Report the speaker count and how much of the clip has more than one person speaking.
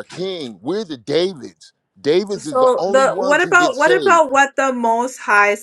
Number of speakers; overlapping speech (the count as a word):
two, about 32%